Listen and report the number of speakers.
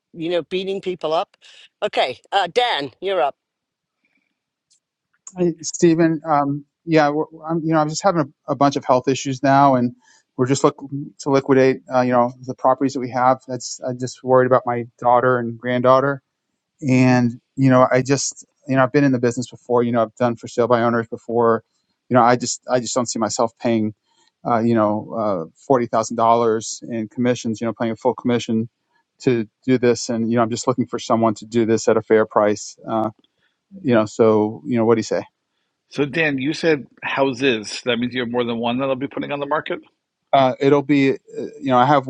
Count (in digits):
3